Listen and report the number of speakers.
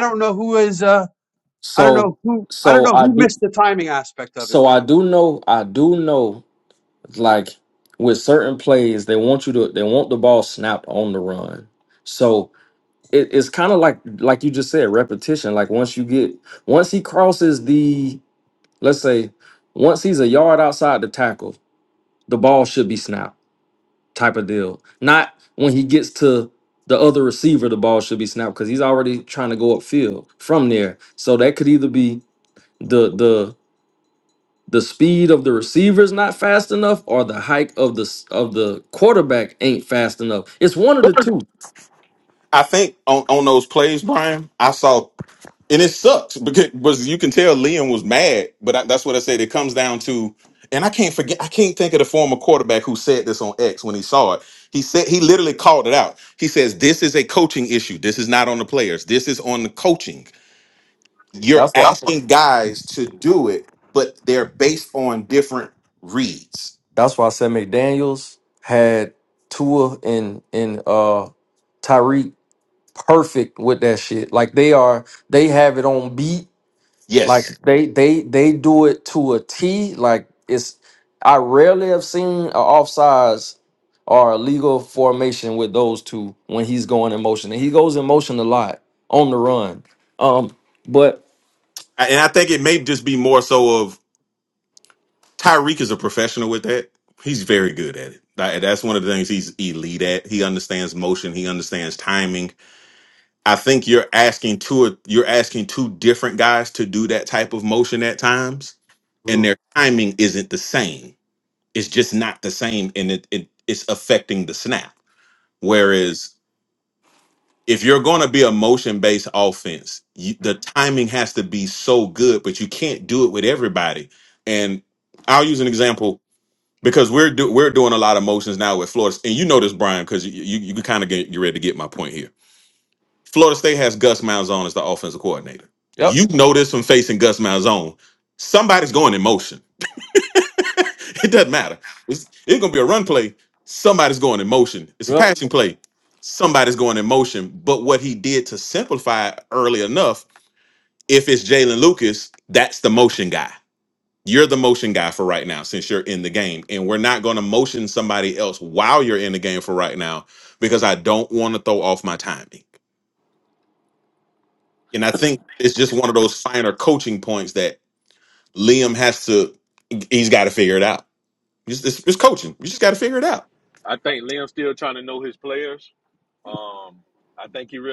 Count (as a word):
four